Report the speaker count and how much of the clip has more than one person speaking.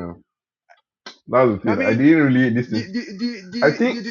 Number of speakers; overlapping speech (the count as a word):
two, about 22%